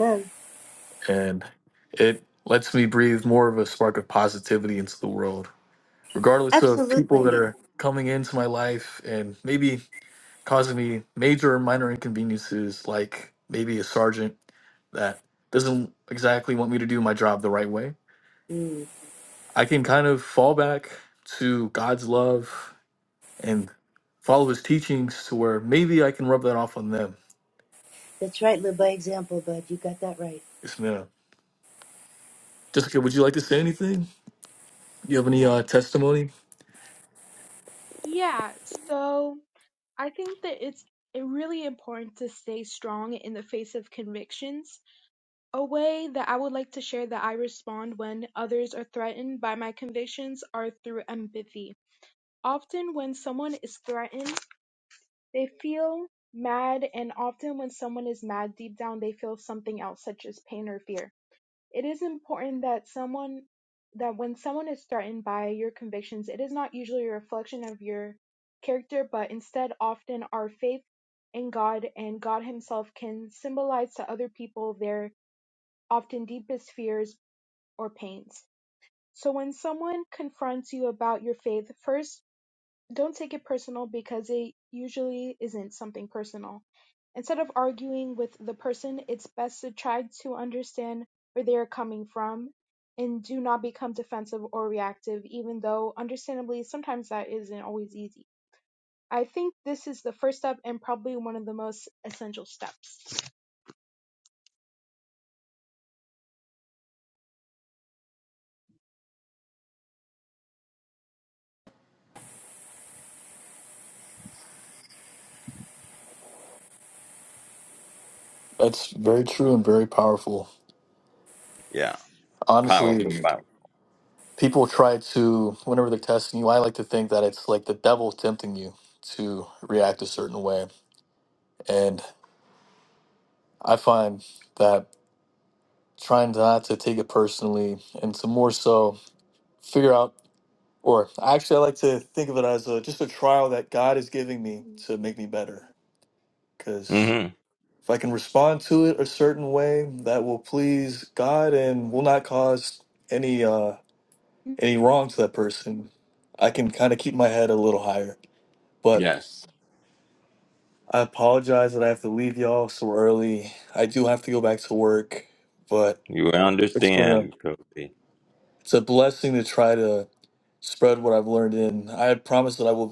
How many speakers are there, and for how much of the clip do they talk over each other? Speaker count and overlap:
four, about 2%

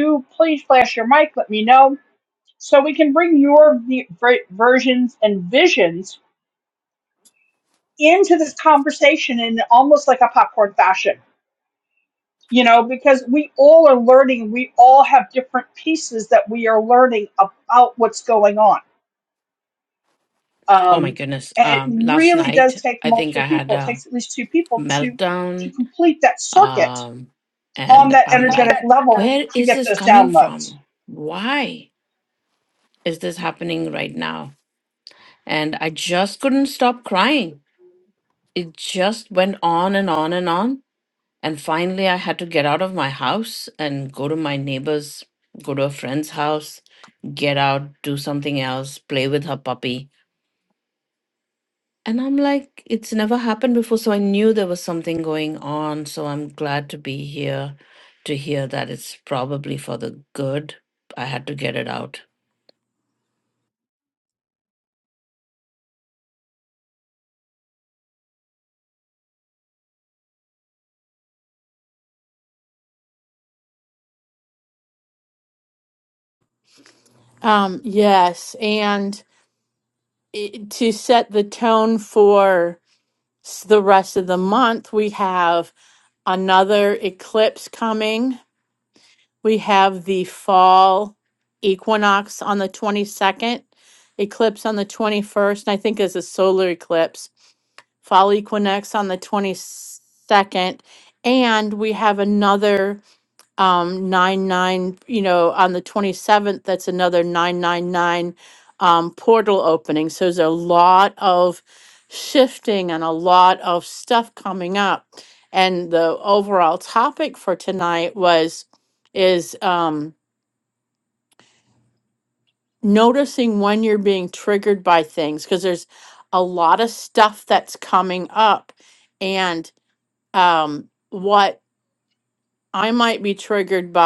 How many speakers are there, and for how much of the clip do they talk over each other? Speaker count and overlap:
three, about 5%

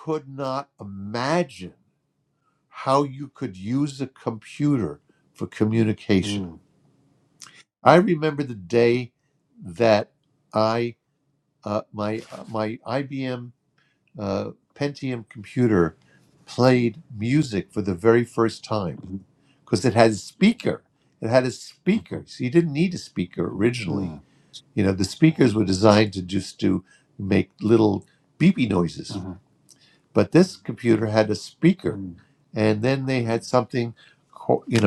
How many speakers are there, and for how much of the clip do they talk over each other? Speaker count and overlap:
two, about 2%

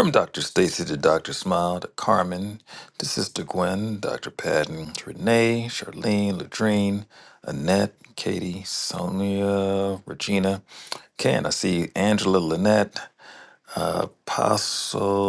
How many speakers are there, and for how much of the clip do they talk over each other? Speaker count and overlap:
one, no overlap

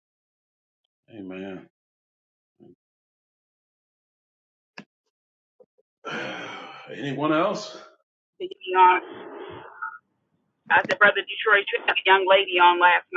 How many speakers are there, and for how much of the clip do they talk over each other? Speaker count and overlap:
two, no overlap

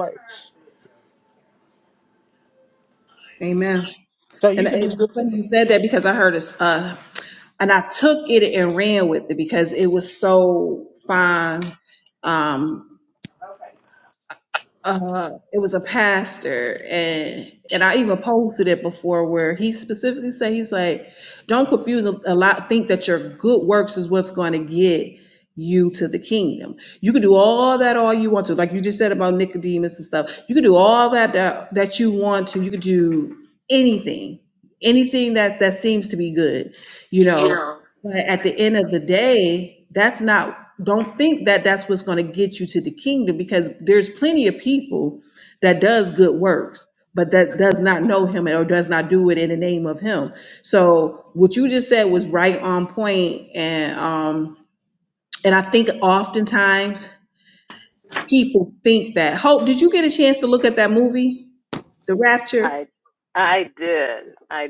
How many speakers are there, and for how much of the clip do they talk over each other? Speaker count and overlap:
three, about 1%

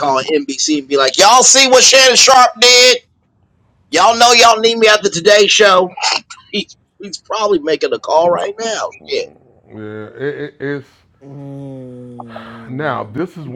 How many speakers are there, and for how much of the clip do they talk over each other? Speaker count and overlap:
three, no overlap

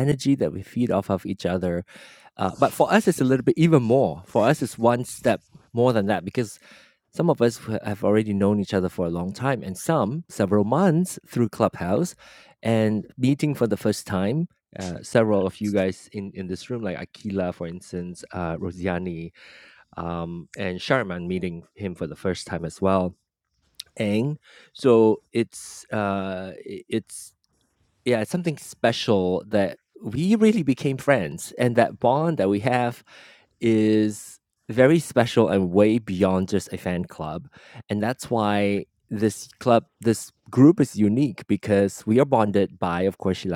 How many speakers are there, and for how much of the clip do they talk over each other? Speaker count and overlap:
one, no overlap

